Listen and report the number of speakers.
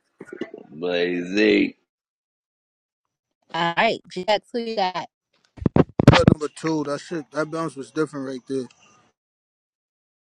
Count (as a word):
three